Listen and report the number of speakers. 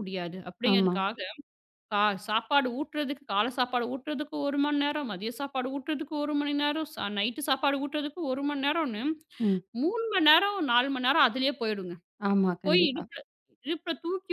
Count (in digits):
2